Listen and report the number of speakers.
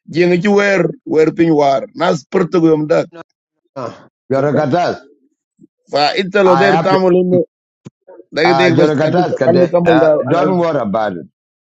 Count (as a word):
two